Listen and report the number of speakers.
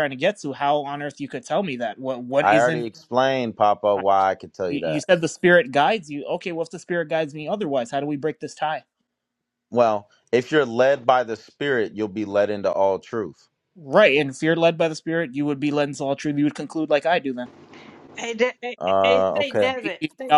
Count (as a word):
three